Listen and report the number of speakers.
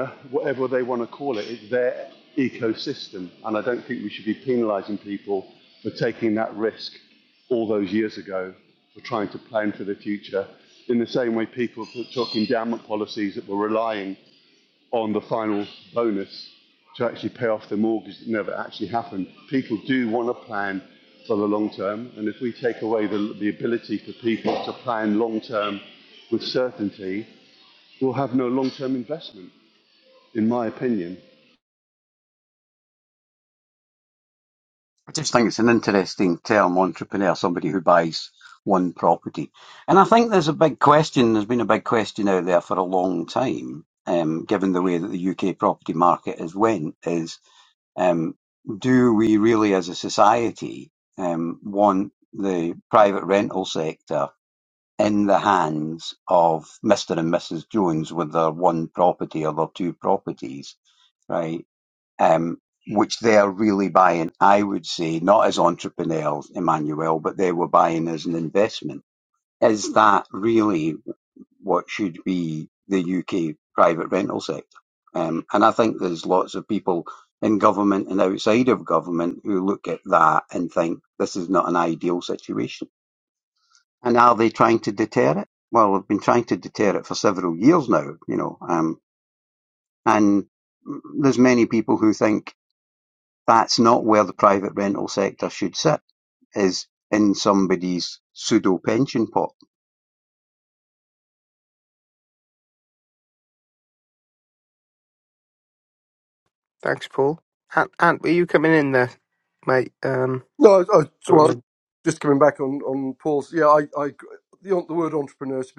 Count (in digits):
4